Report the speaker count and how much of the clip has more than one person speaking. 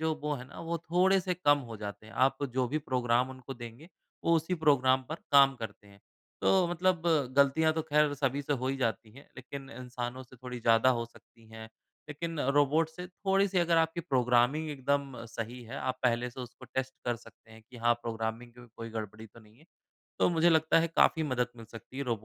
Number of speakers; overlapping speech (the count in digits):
1, no overlap